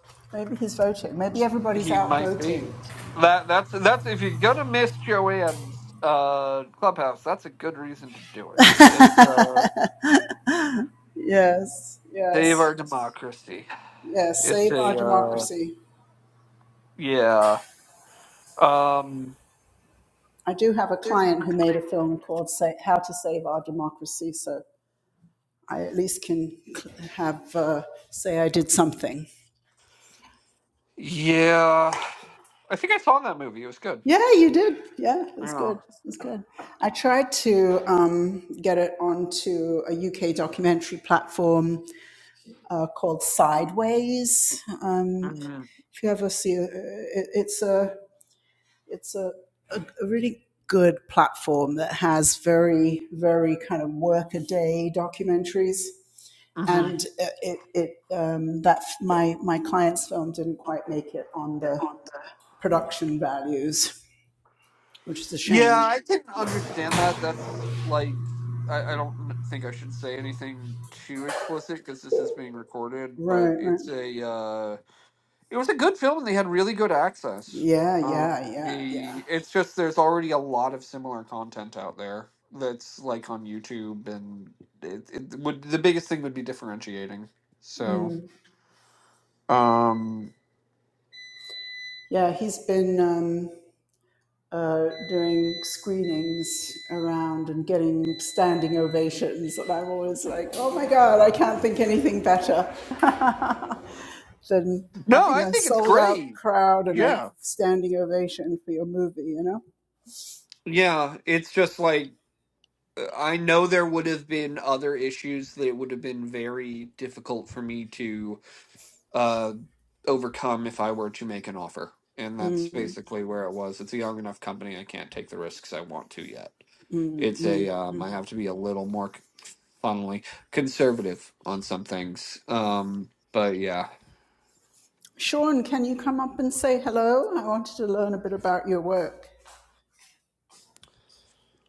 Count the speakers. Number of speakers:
2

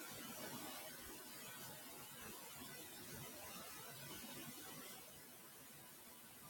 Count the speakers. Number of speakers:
0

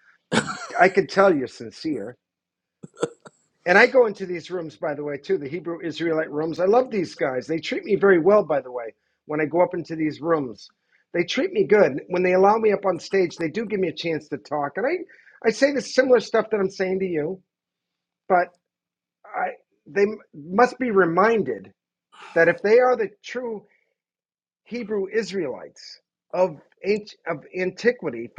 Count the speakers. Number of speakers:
1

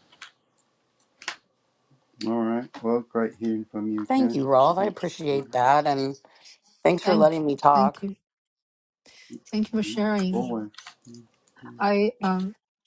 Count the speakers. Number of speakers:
3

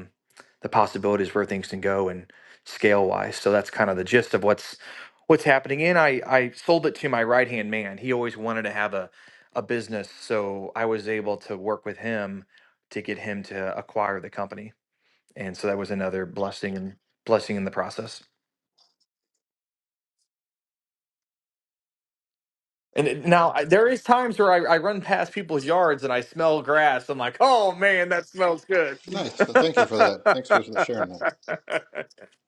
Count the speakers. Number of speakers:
2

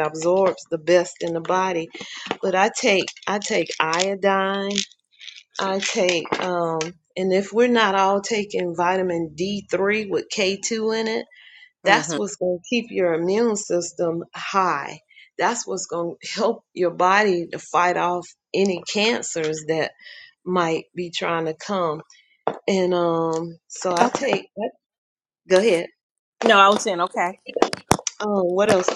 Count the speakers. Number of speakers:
2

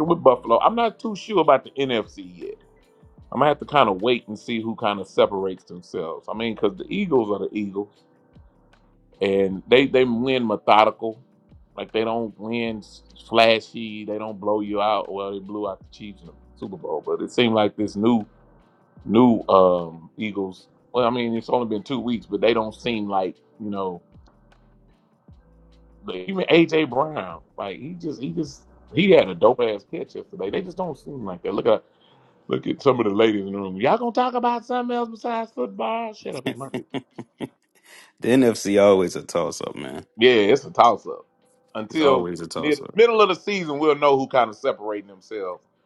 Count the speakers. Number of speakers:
2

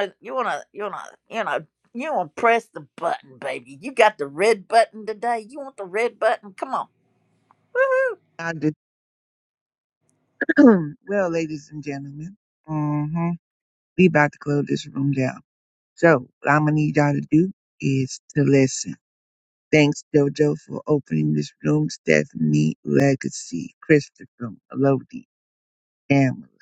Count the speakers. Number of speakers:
2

